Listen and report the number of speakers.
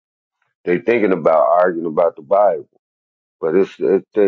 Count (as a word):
one